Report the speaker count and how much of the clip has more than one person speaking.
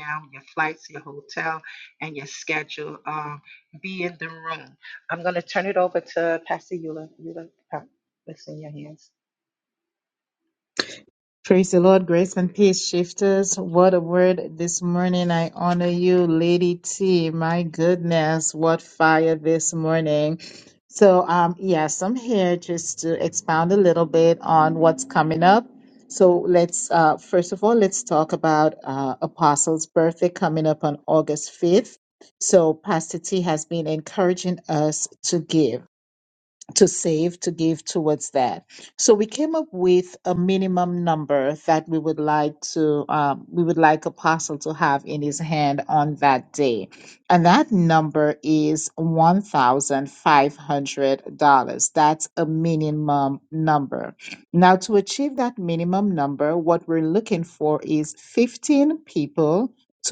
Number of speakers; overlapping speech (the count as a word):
two, no overlap